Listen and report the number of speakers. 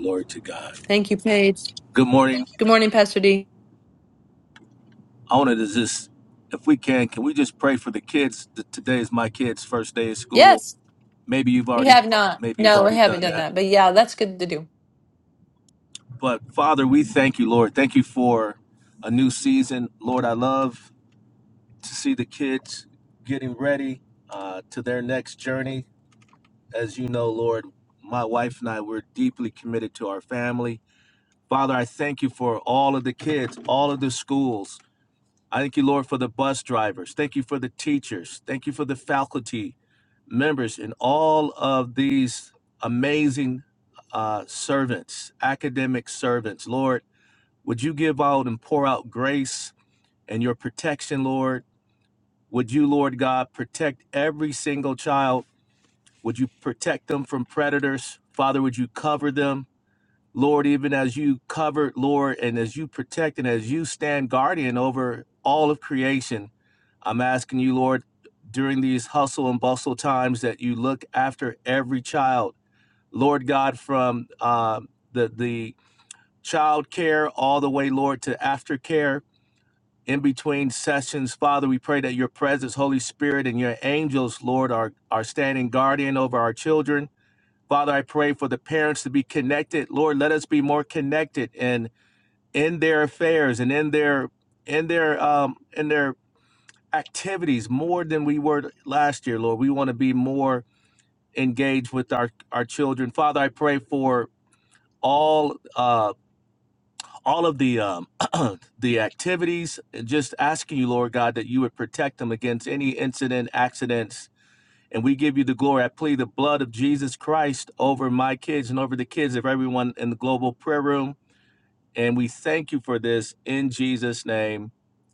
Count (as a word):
two